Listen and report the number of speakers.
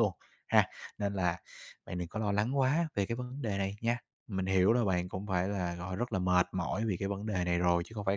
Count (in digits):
1